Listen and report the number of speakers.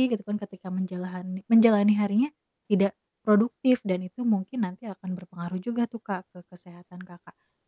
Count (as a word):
one